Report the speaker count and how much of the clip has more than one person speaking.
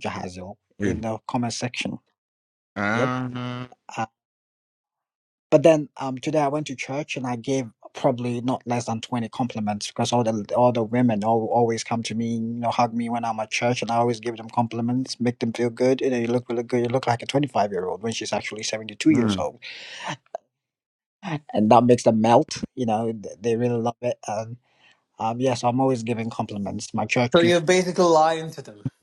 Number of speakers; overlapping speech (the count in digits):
3, about 3%